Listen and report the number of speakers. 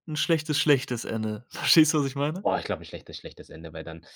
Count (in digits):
2